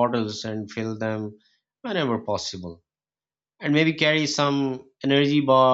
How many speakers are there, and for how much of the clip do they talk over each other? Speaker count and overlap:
one, no overlap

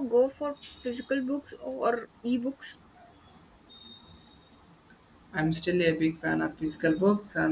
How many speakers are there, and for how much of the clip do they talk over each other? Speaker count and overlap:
two, no overlap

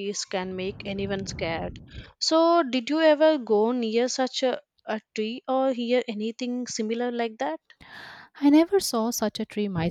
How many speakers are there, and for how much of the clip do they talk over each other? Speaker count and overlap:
two, no overlap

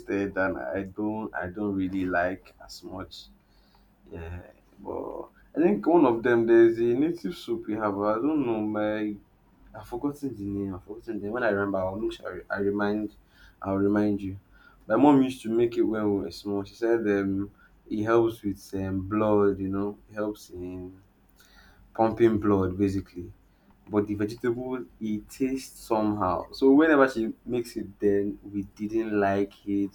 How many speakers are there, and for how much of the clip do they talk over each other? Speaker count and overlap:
one, no overlap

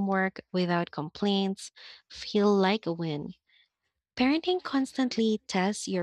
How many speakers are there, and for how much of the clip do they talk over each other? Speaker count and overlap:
one, no overlap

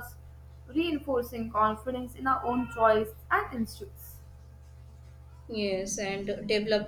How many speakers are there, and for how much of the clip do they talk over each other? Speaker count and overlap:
two, no overlap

